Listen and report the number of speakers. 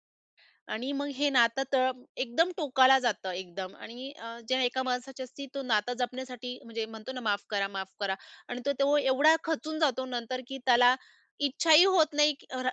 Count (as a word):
one